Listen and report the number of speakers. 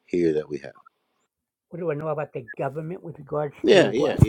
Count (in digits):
2